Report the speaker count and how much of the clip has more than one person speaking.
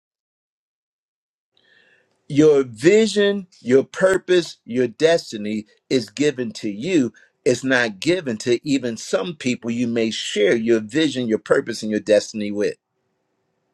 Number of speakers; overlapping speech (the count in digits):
1, no overlap